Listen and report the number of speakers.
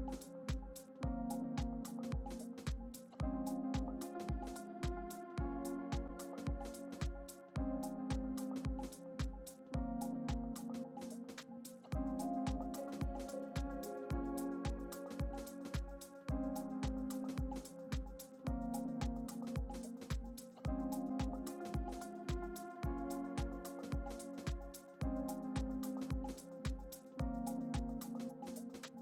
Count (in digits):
0